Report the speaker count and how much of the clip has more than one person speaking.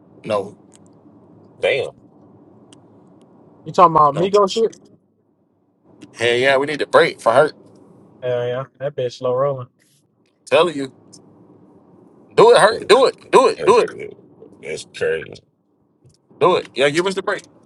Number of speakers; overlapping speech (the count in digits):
3, about 3%